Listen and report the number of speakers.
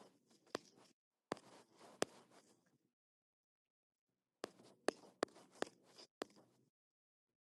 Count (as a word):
zero